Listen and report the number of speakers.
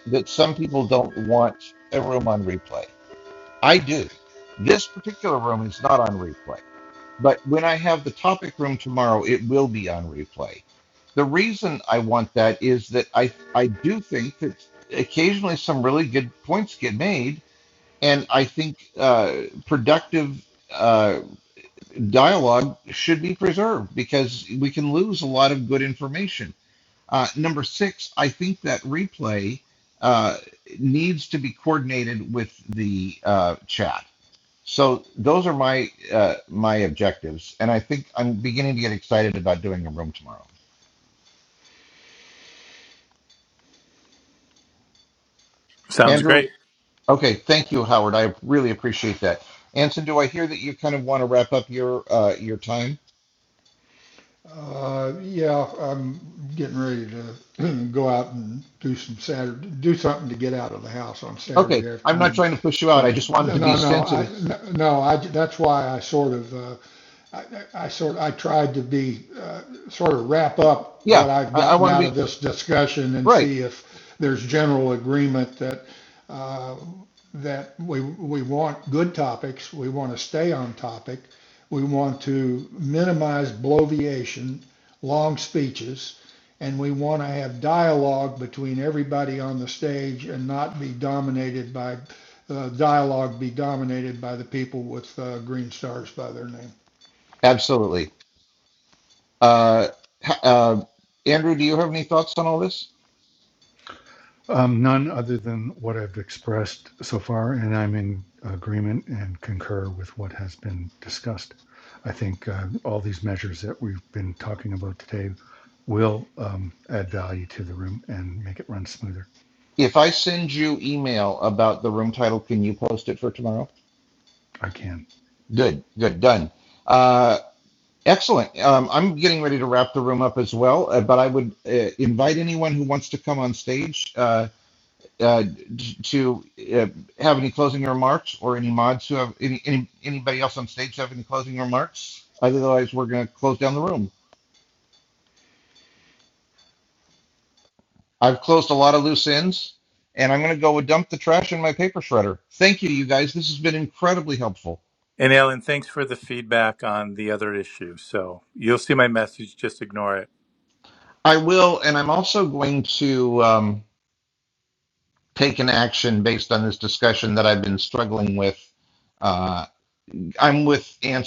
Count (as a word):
four